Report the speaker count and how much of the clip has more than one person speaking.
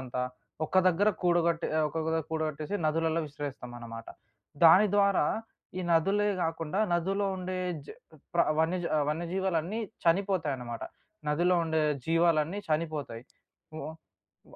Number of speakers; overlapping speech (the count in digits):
1, no overlap